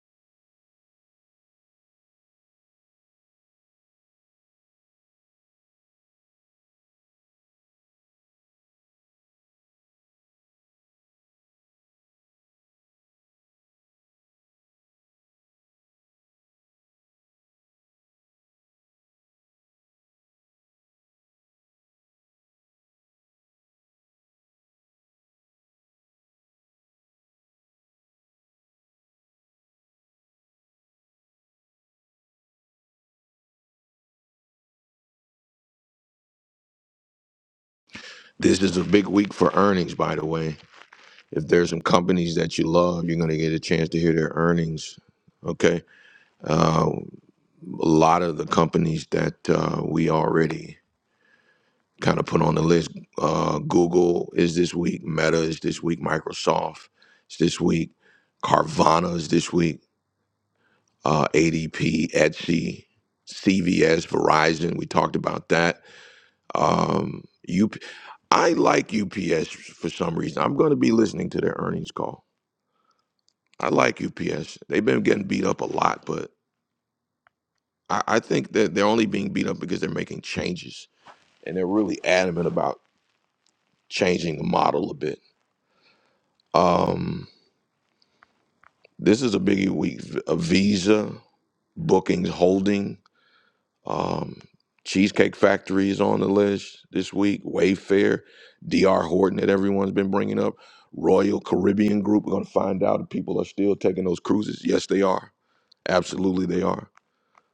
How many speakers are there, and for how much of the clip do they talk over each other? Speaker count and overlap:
1, no overlap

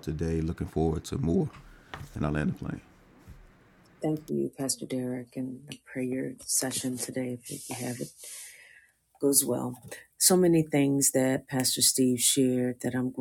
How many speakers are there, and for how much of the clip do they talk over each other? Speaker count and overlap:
2, no overlap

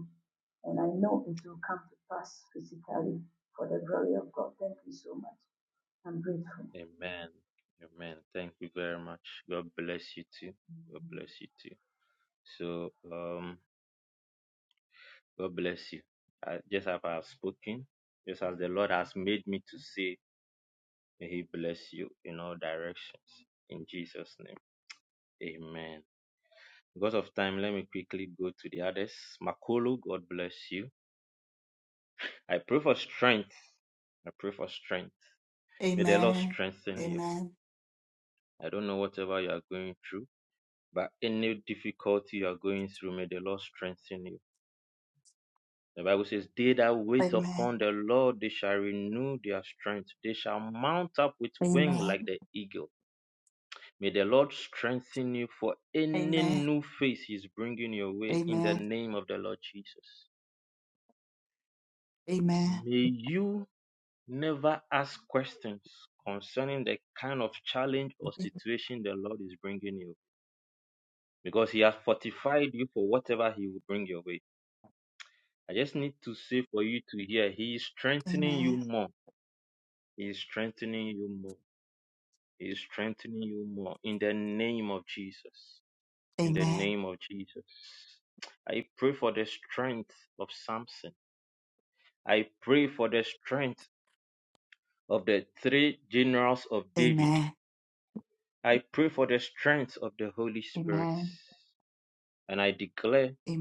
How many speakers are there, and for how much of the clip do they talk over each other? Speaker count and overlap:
3, about 5%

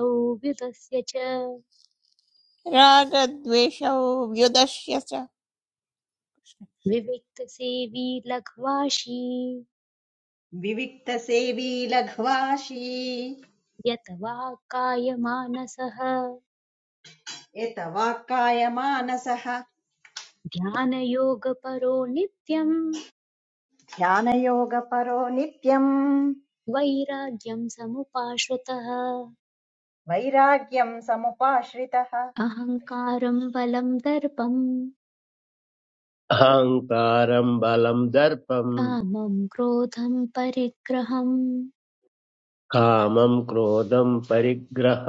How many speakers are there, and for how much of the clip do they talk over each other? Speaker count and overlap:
4, under 1%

